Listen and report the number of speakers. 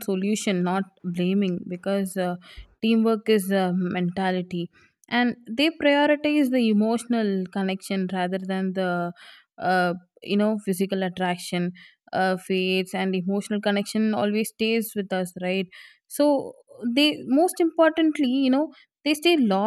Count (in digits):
1